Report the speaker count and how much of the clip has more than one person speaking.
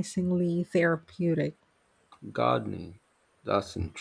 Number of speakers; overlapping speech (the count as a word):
two, no overlap